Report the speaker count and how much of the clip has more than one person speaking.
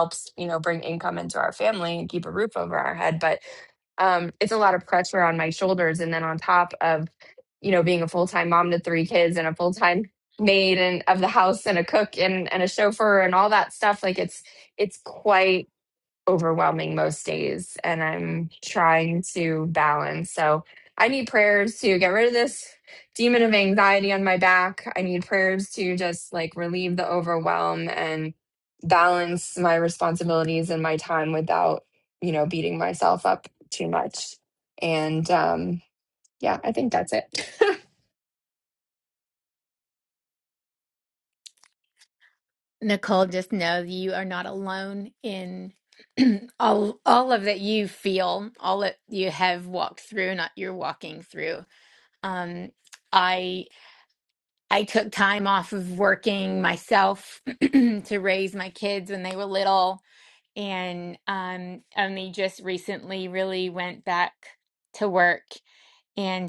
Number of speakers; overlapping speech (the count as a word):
two, no overlap